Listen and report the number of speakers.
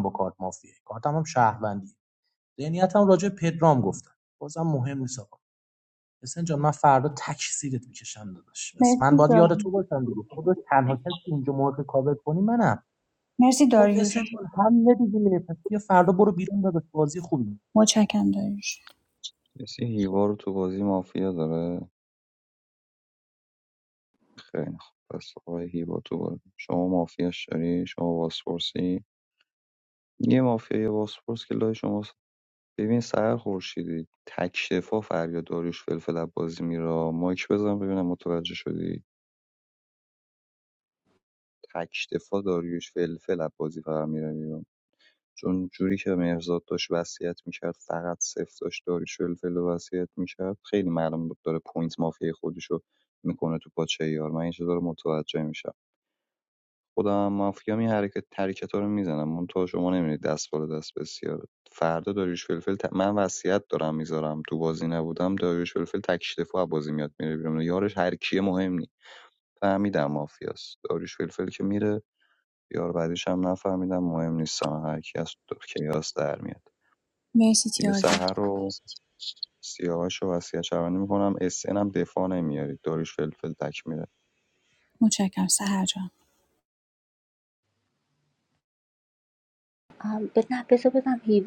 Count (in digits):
4